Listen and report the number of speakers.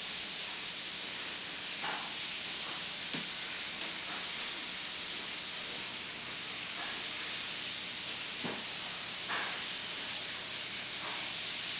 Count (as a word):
zero